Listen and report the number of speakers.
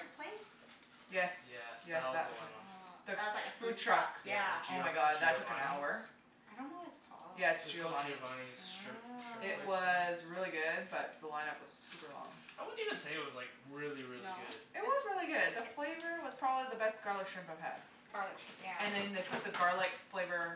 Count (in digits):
3